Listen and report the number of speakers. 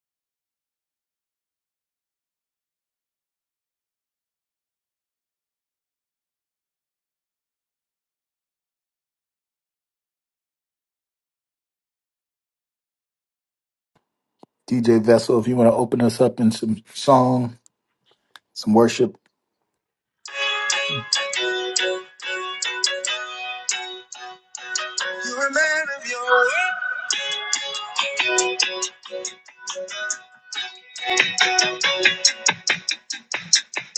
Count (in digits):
2